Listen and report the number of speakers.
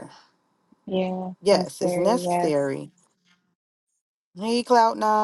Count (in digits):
2